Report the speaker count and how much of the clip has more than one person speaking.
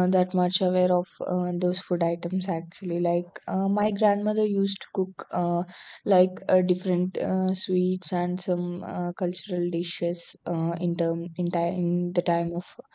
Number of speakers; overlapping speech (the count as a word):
one, no overlap